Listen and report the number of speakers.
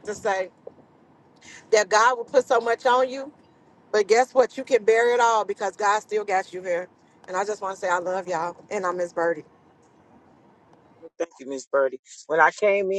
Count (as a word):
two